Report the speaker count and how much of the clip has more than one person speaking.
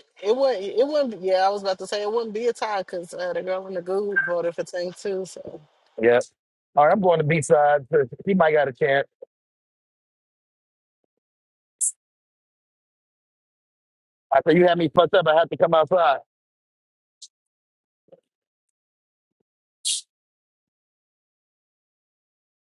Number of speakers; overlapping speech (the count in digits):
2, no overlap